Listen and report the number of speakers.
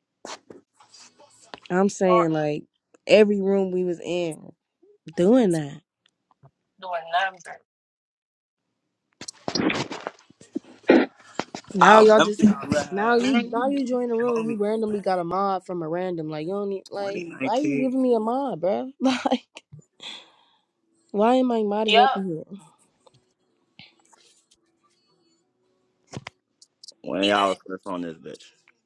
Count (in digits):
3